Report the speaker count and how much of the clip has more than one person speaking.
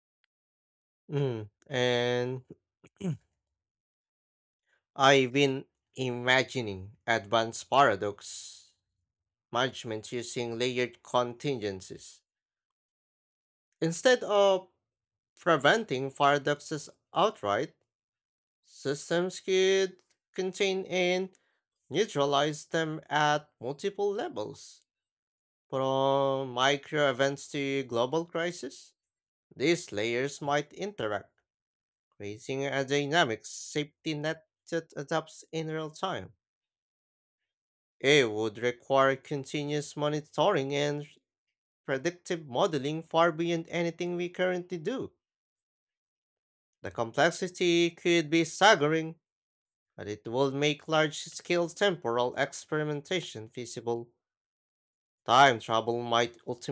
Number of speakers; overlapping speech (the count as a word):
one, no overlap